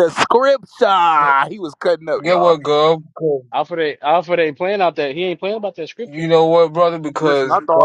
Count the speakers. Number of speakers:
three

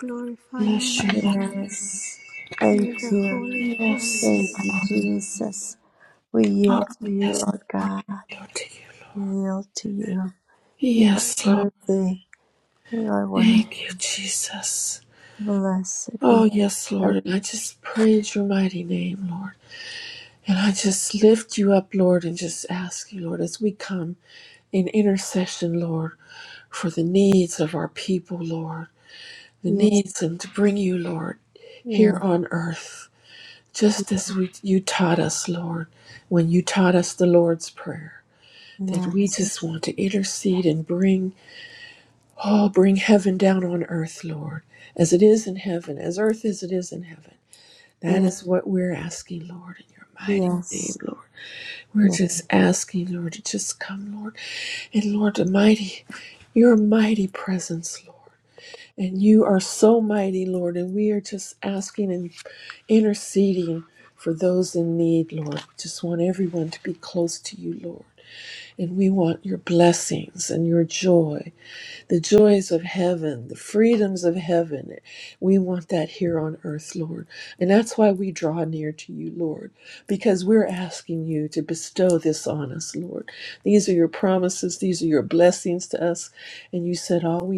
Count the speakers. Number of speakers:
three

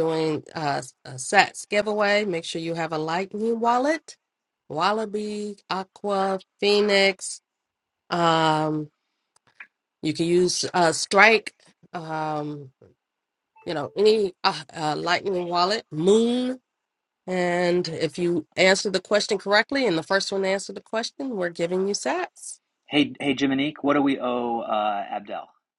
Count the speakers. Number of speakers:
two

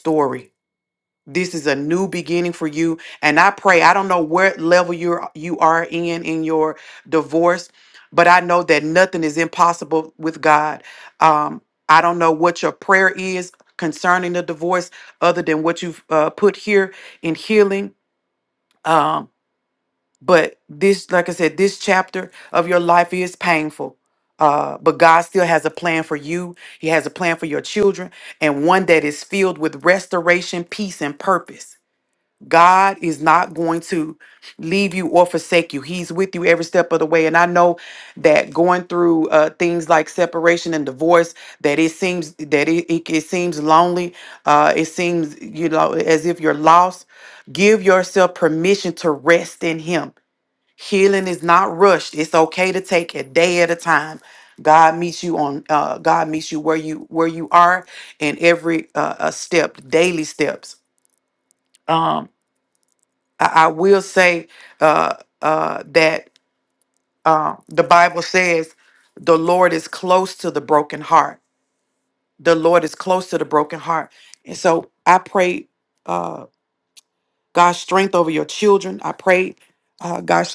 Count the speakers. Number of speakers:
one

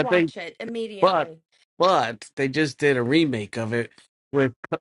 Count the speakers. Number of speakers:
two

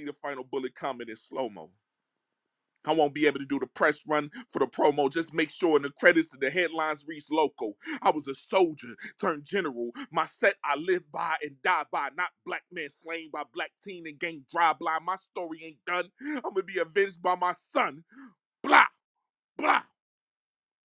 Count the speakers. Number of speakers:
one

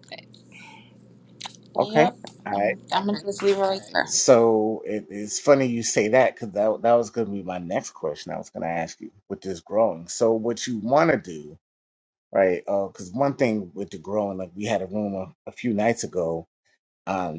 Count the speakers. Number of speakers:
two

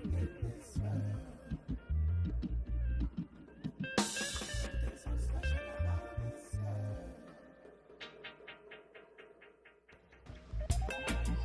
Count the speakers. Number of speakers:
zero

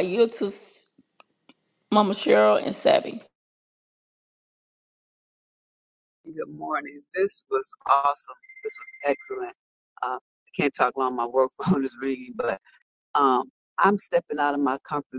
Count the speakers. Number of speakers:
two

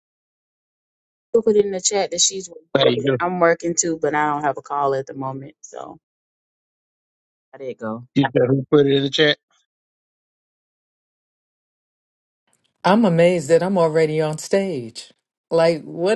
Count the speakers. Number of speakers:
three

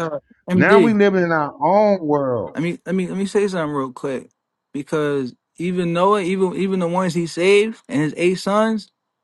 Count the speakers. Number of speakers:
two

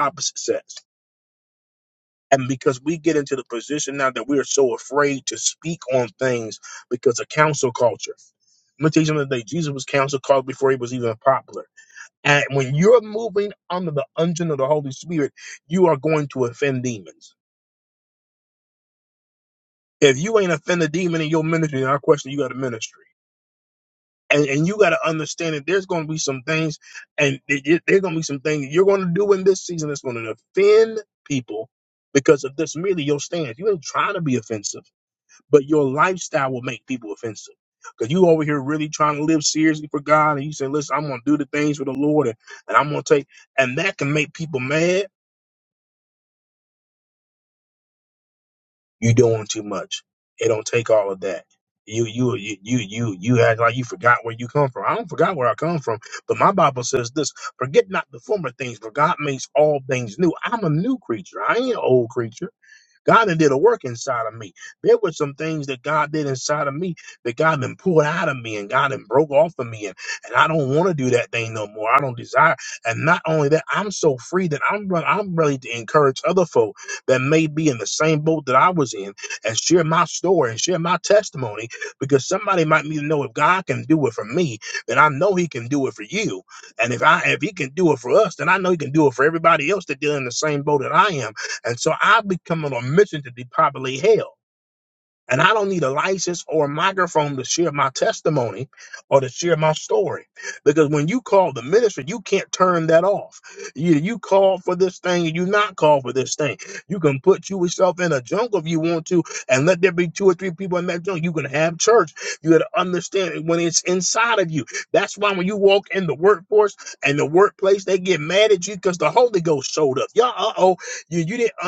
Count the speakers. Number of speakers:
one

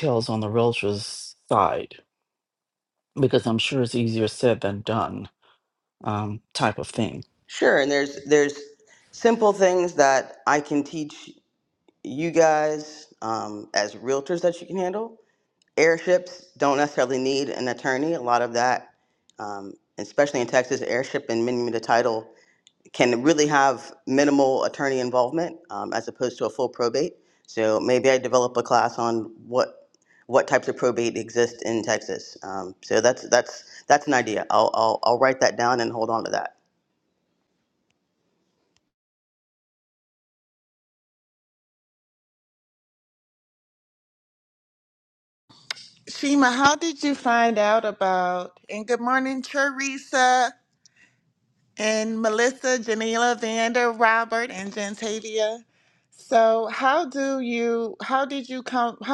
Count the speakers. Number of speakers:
three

